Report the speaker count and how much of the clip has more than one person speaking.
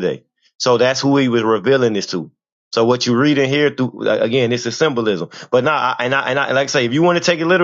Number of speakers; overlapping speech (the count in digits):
1, no overlap